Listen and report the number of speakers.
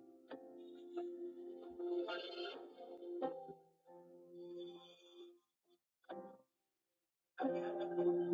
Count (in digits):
0